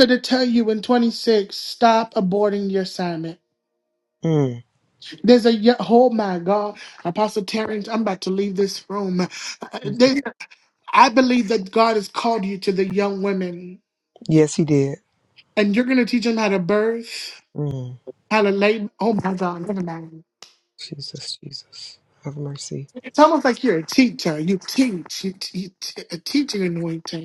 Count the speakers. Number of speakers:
2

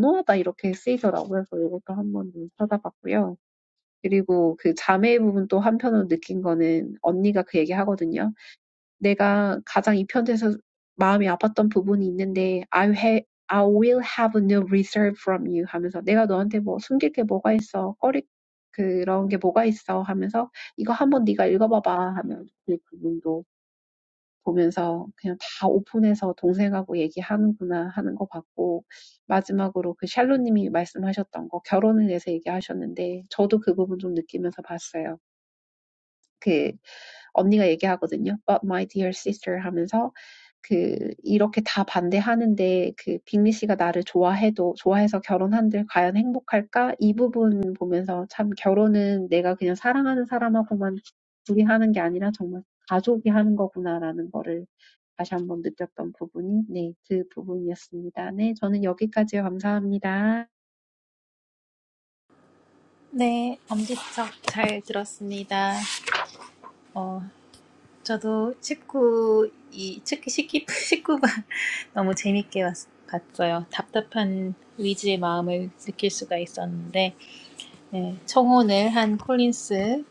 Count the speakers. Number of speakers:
2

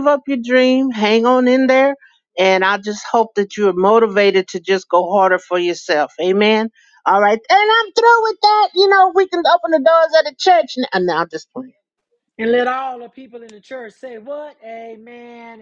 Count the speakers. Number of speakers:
2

